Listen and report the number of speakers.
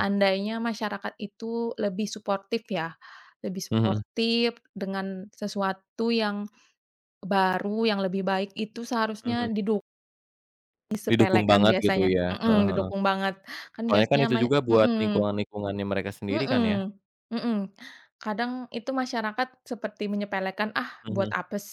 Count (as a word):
two